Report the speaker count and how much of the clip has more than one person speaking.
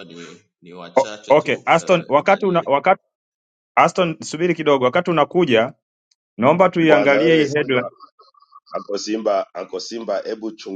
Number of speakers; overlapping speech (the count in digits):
3, about 26%